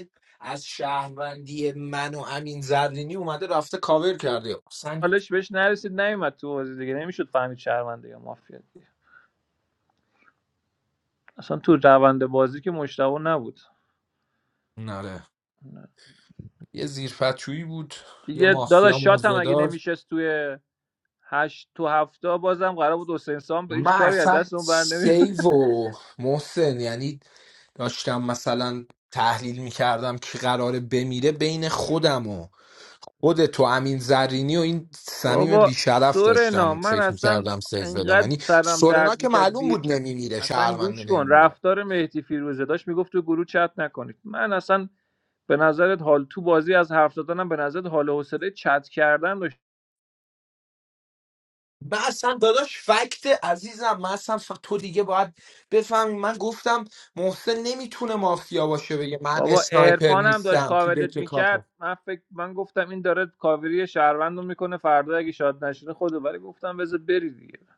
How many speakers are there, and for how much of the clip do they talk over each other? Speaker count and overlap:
2, about 15%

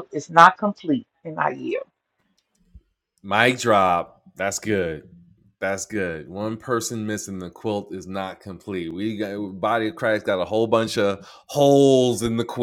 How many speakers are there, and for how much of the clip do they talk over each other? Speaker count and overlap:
2, no overlap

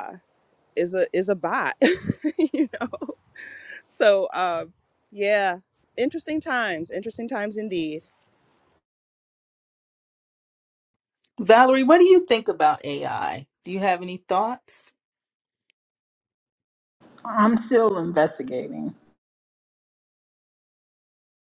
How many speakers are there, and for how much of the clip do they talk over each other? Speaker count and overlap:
3, no overlap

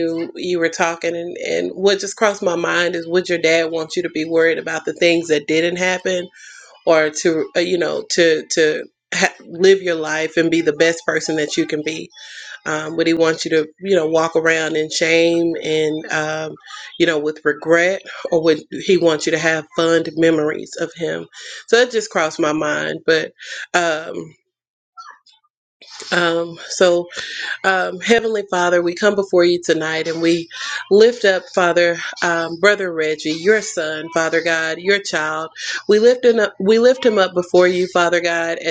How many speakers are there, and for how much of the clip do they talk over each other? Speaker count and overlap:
1, no overlap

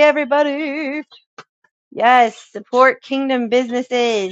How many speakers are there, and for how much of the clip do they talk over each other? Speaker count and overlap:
1, no overlap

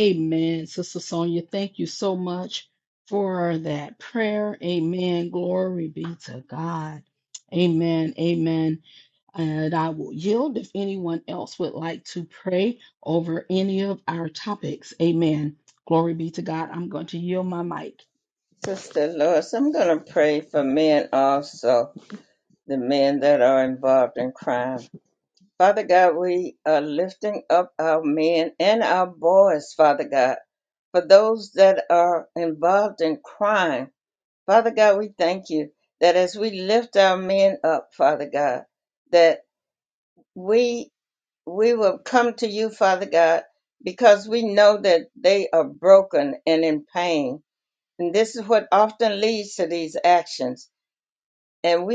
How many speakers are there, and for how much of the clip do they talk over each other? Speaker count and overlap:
2, no overlap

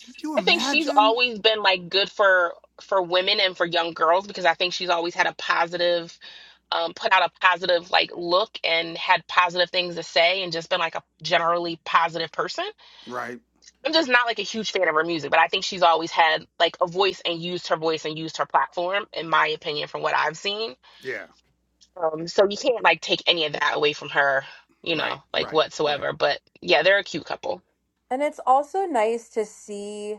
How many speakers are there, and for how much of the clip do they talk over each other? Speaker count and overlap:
3, about 6%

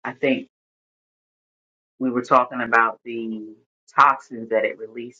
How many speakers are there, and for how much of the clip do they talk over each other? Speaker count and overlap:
1, no overlap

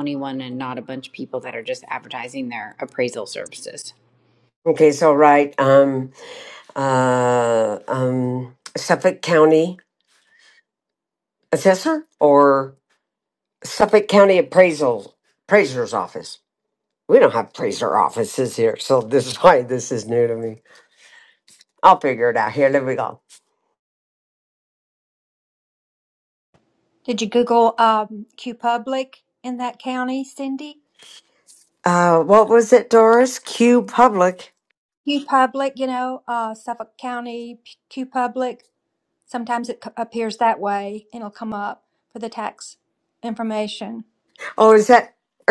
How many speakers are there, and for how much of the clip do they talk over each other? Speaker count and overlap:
3, no overlap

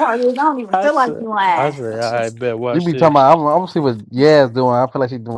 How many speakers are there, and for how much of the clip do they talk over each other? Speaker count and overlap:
3, about 20%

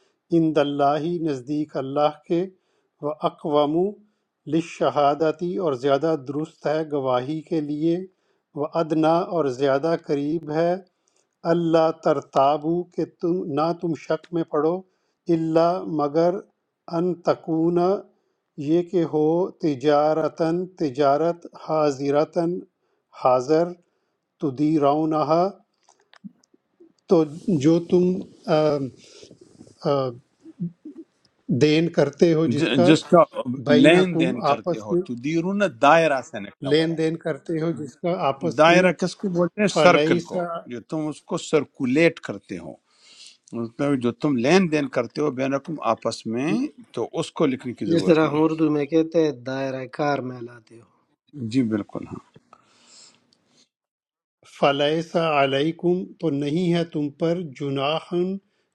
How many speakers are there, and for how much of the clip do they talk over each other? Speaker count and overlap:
3, about 7%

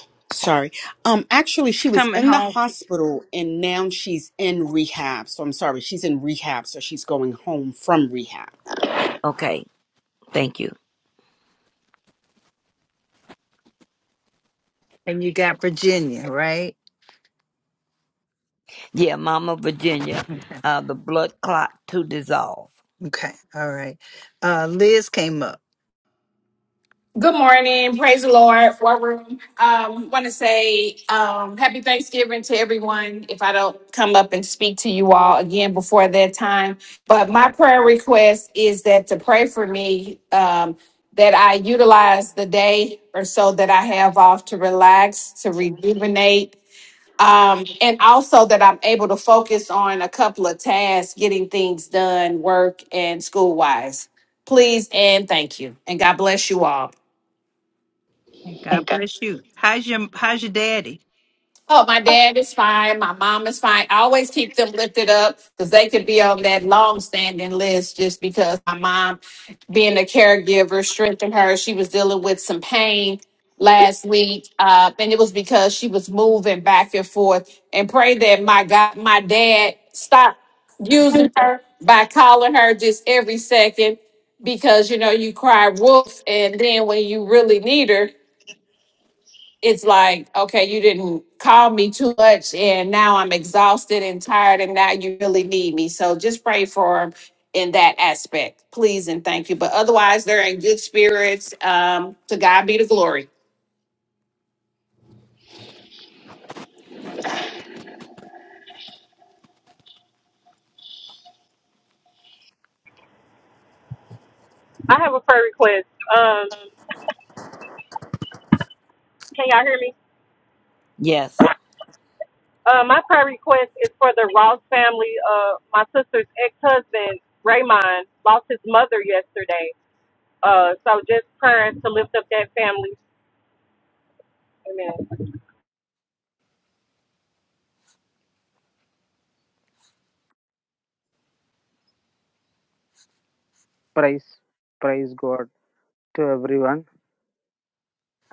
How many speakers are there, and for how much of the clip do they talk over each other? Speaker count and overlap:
6, under 1%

